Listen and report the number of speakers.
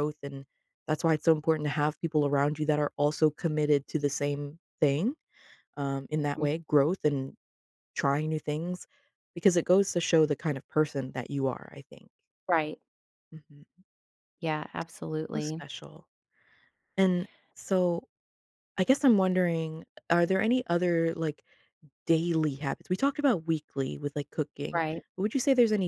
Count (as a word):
two